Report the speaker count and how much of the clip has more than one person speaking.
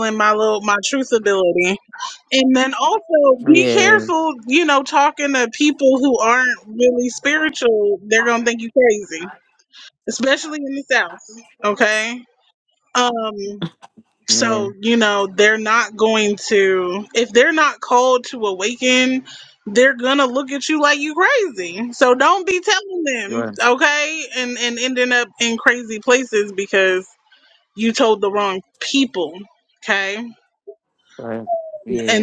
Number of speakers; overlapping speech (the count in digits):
2, about 4%